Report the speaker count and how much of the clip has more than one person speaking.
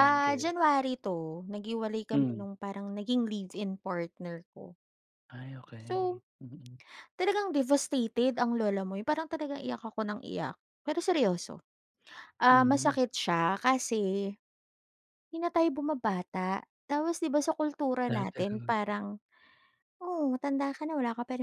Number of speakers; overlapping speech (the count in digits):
2, about 8%